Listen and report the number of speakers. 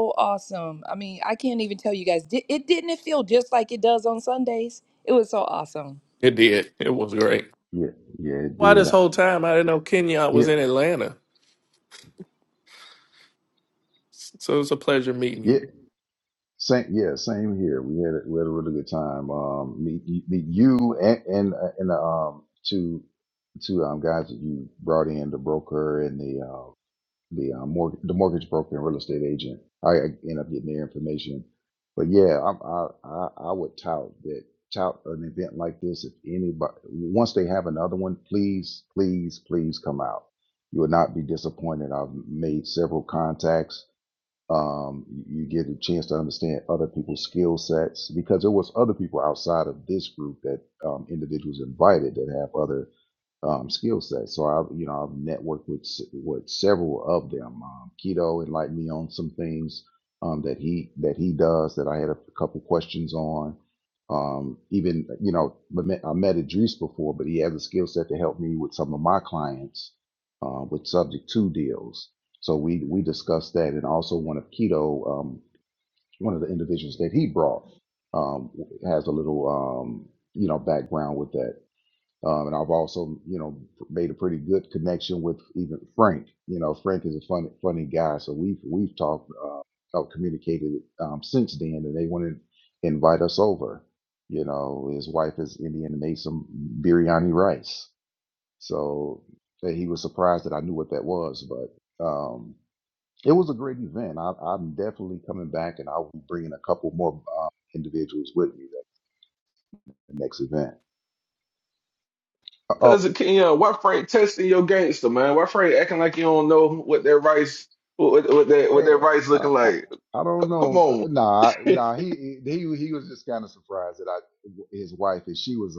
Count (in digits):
4